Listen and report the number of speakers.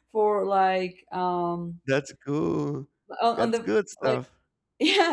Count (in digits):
2